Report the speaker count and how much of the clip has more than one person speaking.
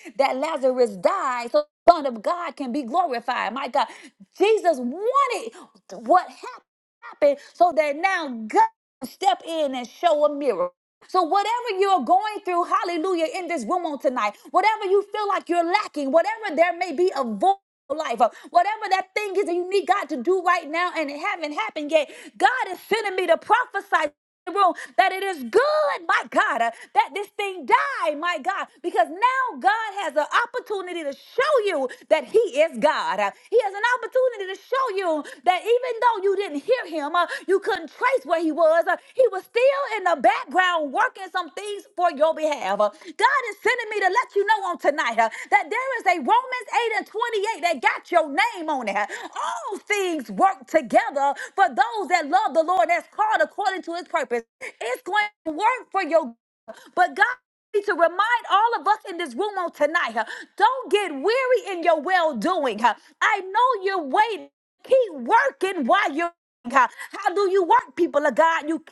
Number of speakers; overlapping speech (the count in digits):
1, no overlap